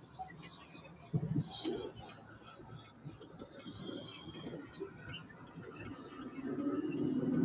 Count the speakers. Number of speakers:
zero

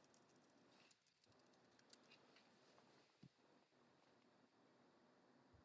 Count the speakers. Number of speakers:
zero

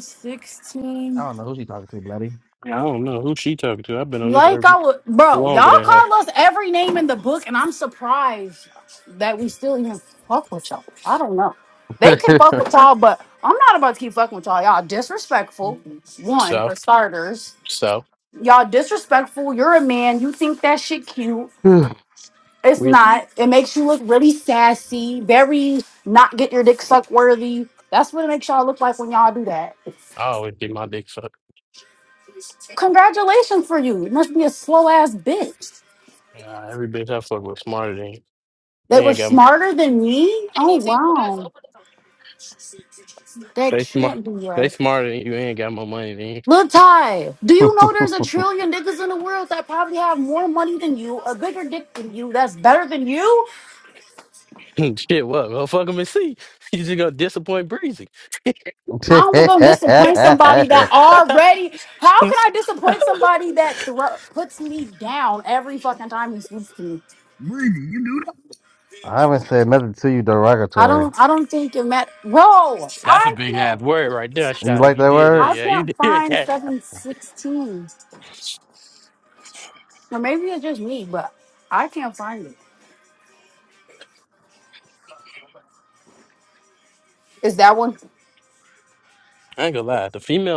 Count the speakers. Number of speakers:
three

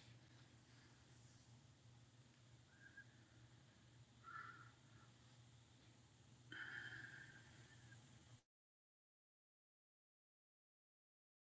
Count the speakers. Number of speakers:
zero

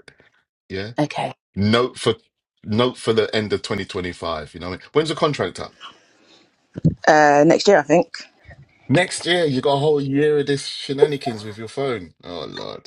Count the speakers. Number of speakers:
two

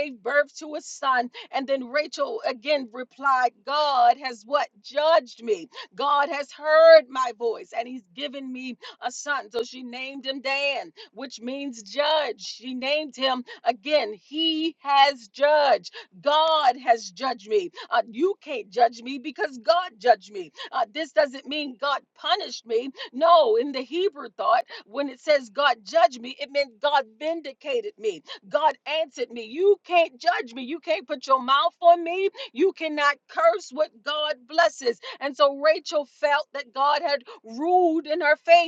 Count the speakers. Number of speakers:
one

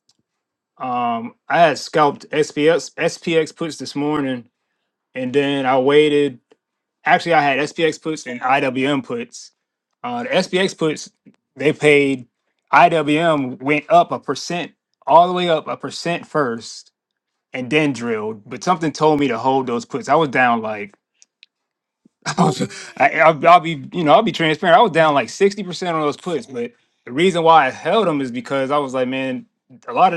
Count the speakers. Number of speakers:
one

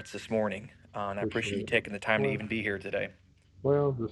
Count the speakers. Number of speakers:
two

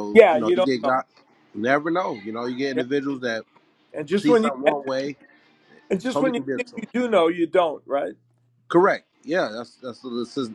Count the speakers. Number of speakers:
two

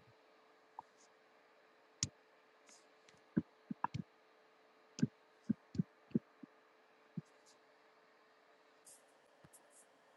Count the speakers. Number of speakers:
zero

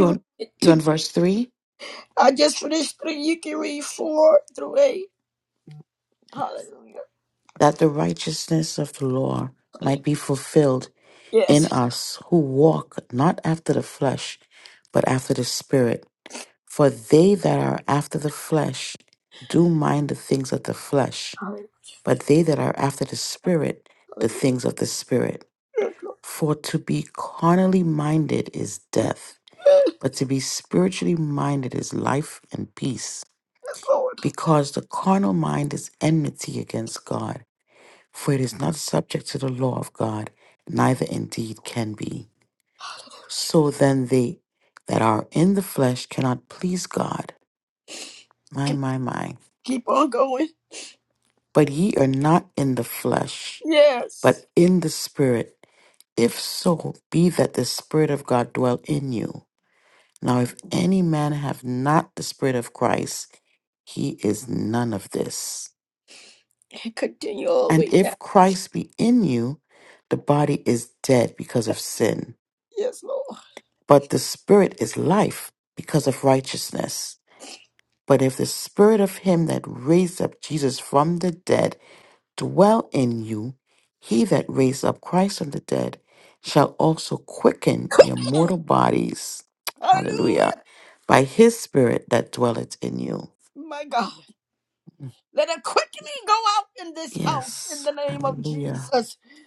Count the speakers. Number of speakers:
two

